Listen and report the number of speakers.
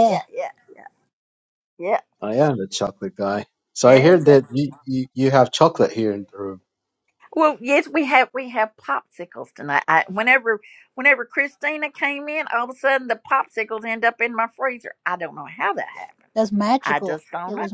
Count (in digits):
3